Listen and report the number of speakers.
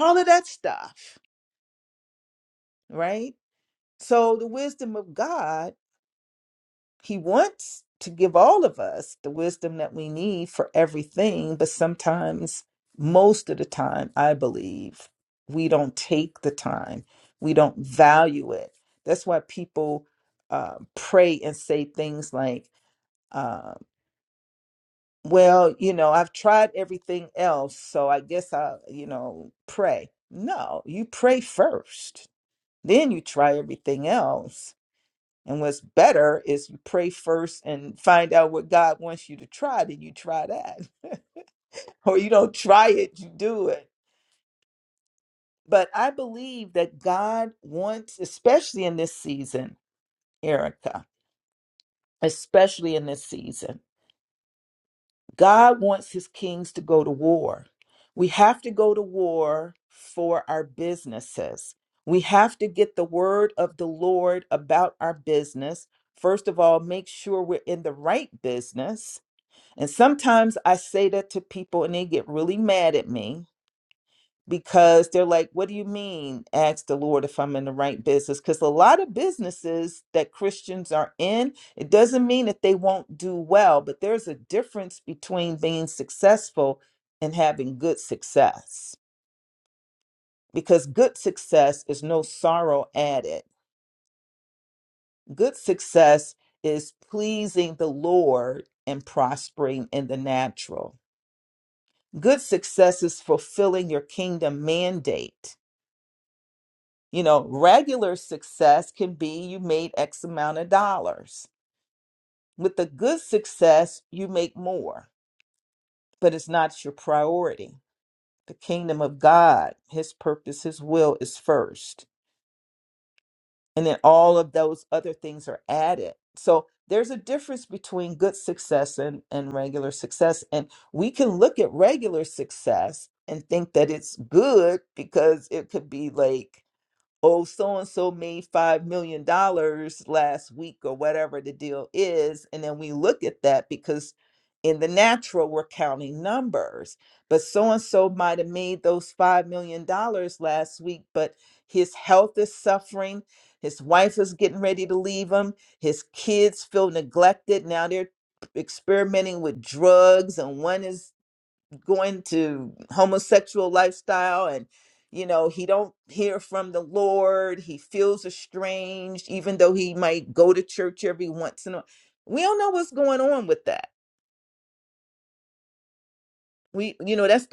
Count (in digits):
1